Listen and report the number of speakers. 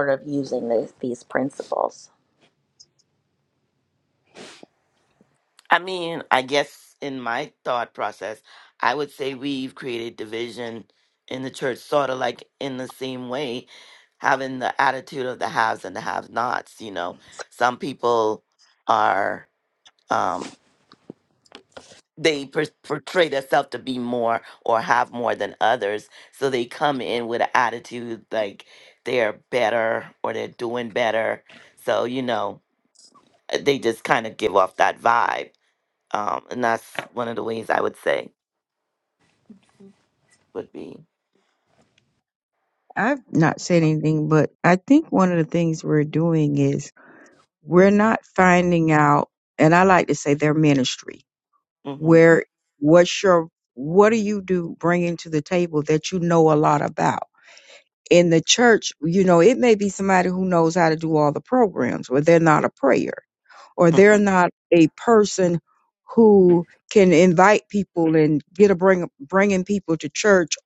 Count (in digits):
3